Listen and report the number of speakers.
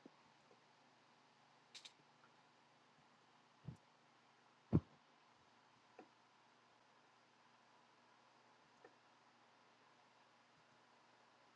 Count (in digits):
0